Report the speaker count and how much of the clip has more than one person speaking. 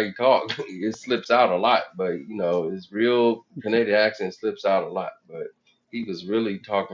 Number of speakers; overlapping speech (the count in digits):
1, no overlap